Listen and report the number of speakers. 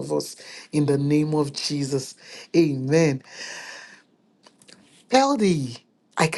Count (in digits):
1